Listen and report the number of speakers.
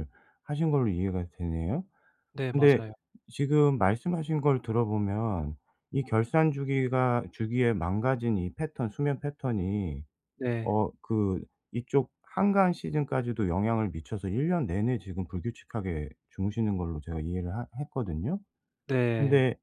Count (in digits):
2